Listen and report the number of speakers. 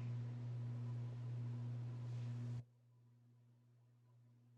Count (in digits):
0